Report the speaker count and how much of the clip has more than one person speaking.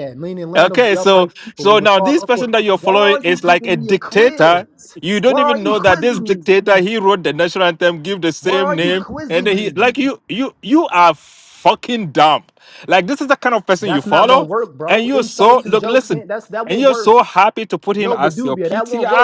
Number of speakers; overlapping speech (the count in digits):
2, about 51%